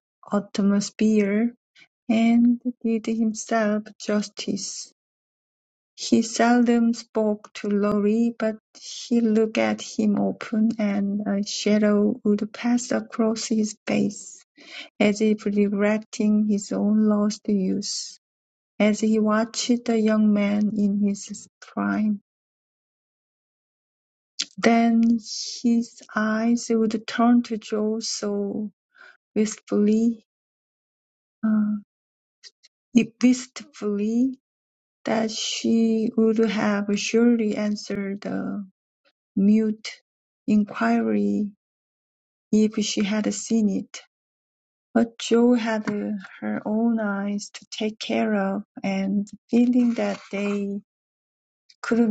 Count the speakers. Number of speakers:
one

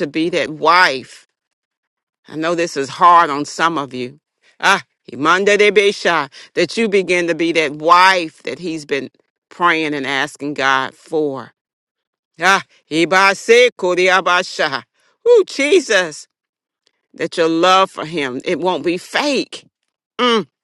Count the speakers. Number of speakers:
one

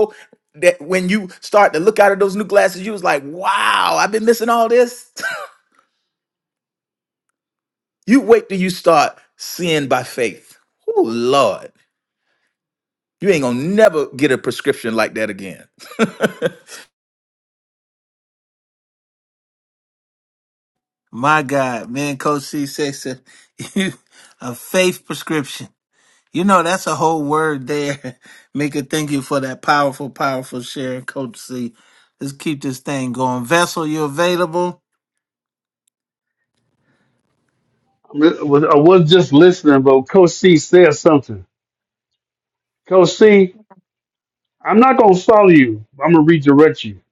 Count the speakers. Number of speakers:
three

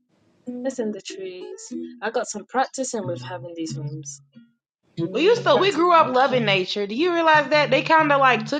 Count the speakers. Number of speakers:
two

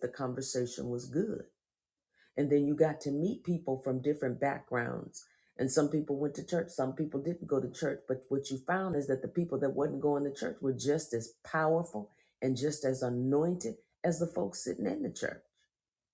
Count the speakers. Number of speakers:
one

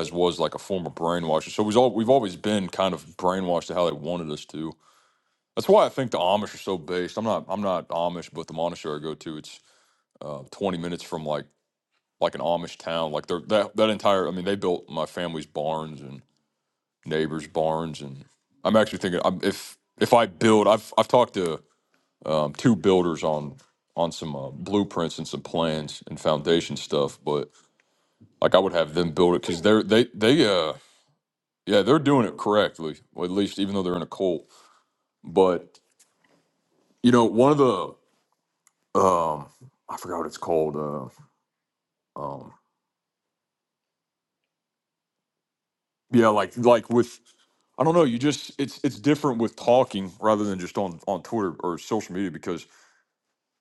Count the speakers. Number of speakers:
one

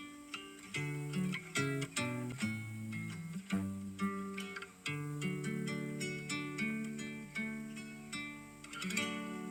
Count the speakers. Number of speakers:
zero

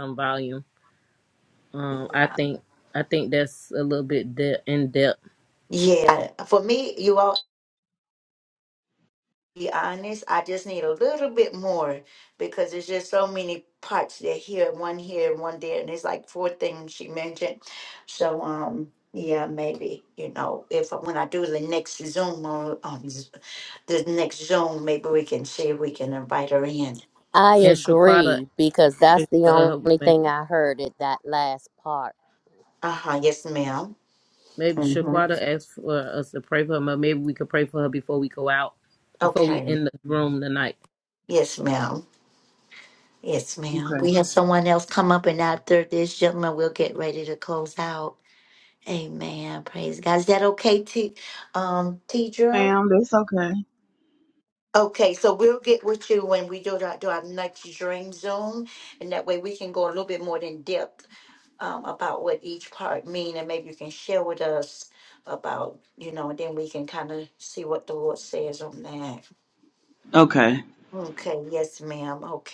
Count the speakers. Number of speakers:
four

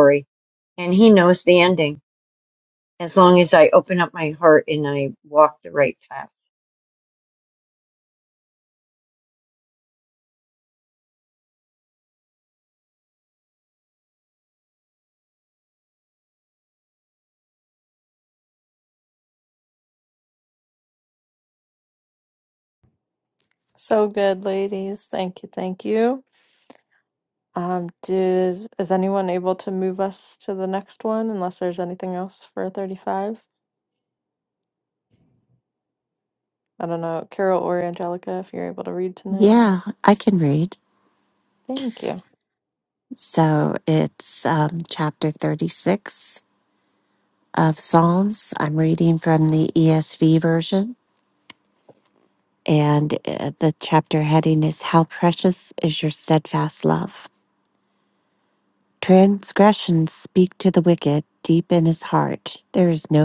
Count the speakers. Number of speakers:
three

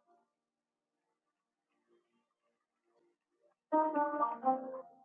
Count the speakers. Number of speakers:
zero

